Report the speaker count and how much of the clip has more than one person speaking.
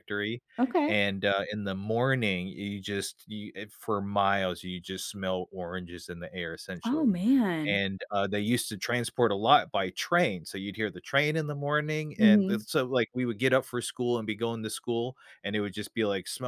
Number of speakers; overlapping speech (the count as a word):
two, about 6%